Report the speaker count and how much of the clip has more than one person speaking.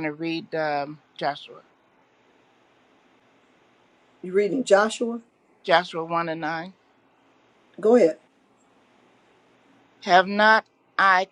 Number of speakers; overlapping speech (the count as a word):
two, no overlap